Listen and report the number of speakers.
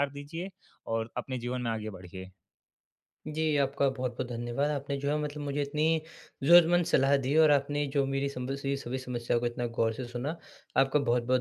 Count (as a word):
two